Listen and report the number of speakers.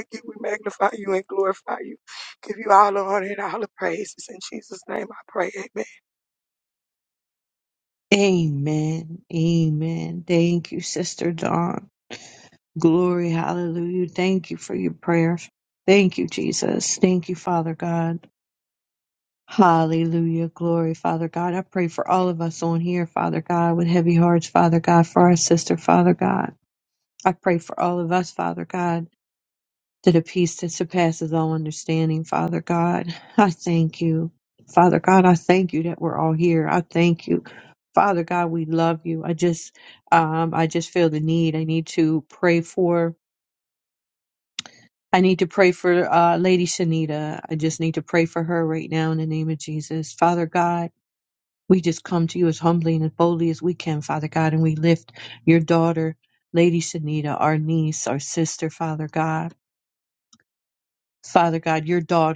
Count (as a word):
two